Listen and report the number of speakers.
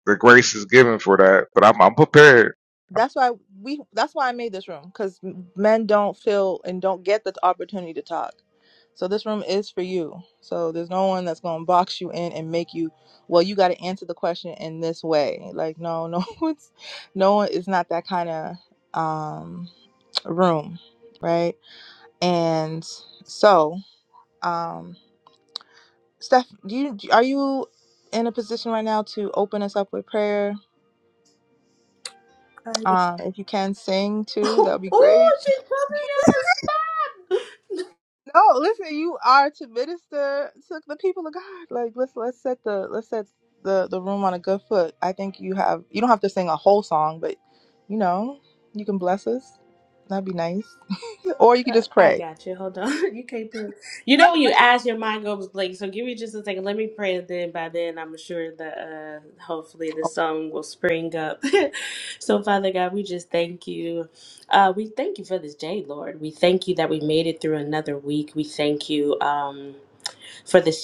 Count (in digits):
3